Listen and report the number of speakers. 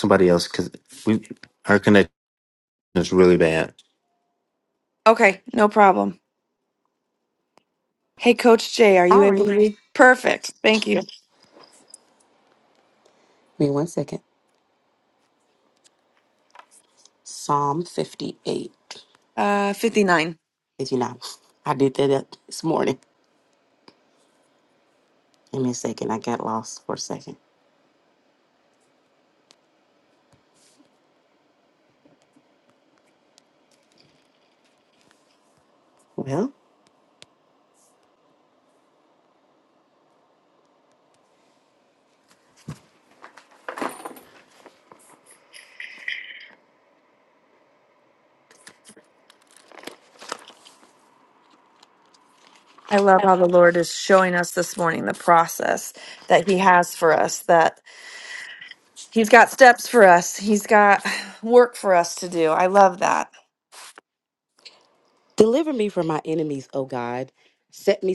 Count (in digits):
3